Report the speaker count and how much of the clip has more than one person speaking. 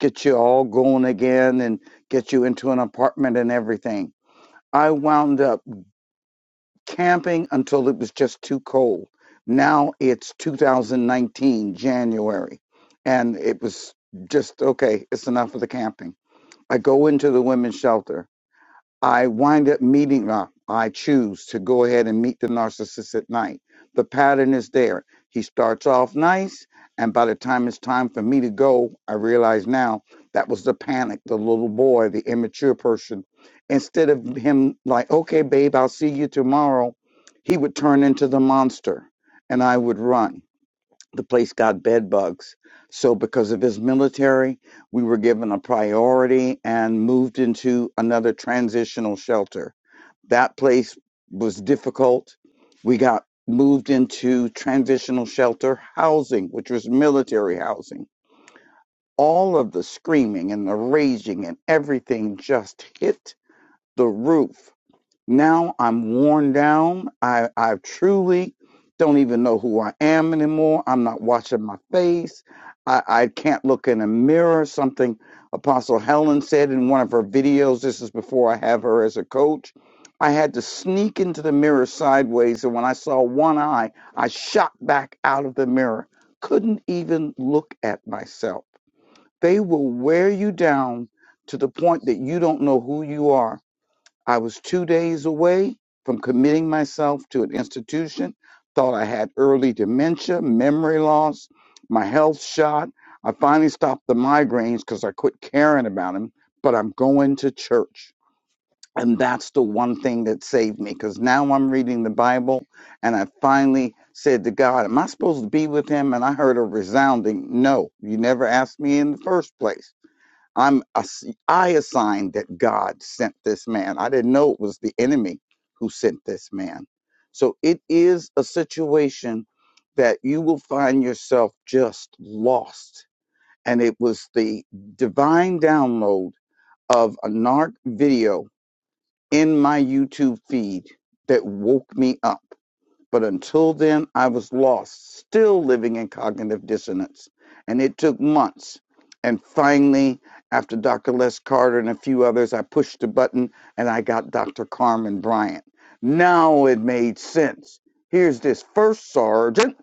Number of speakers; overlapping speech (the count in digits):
1, no overlap